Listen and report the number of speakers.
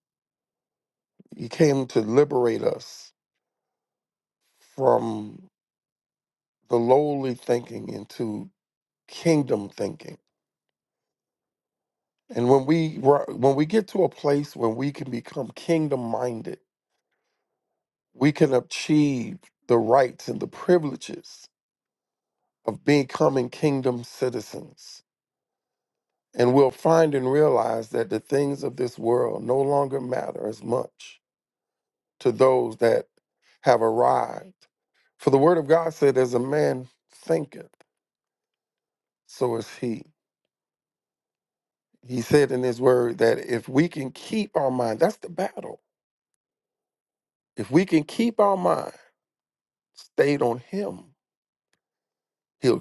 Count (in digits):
1